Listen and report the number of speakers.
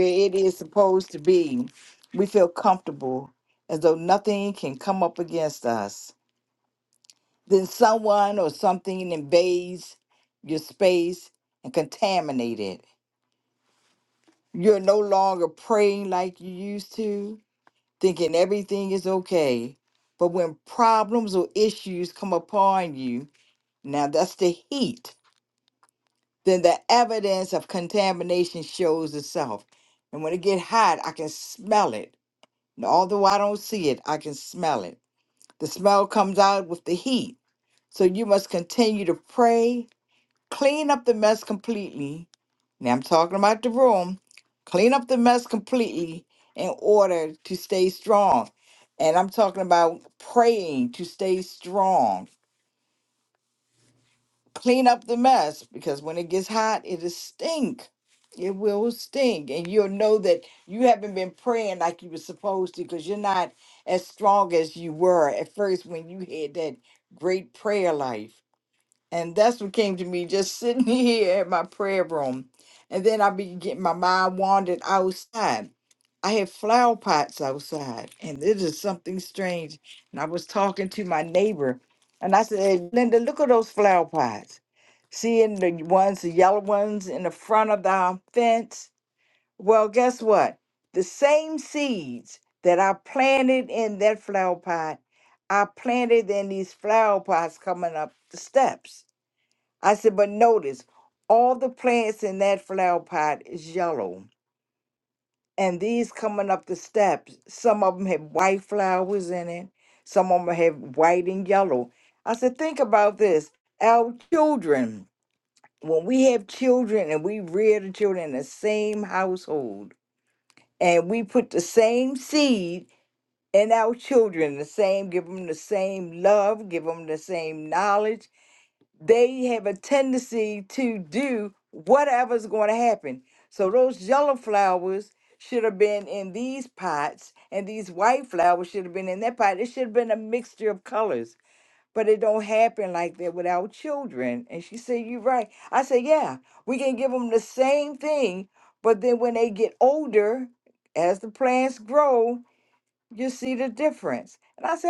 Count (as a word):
one